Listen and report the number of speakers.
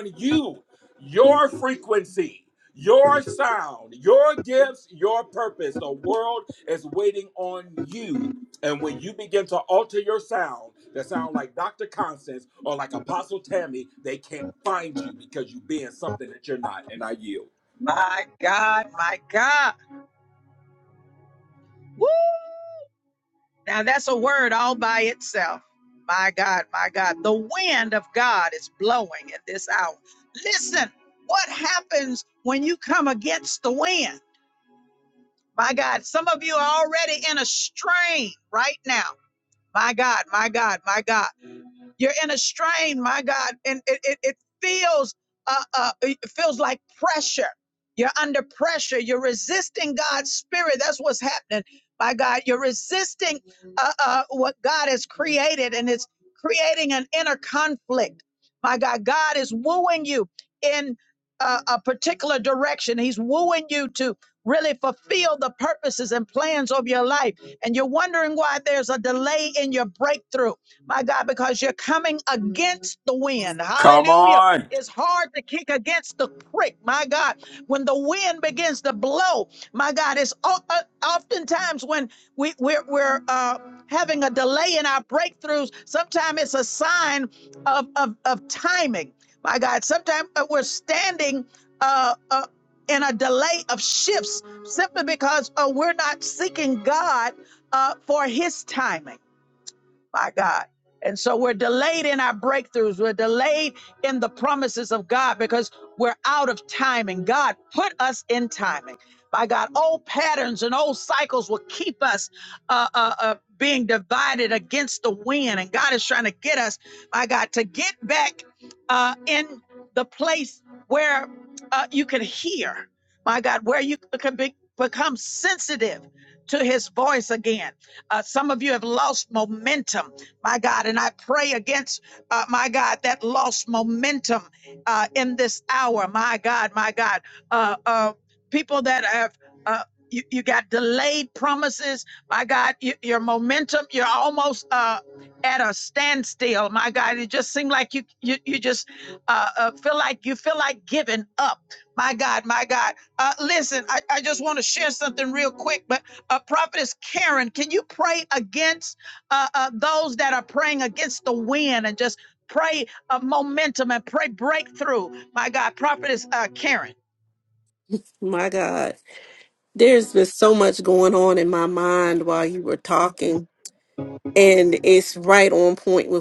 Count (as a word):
three